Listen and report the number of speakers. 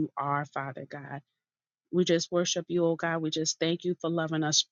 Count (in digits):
1